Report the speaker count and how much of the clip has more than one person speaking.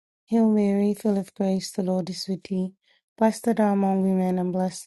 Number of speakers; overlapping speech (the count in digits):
1, no overlap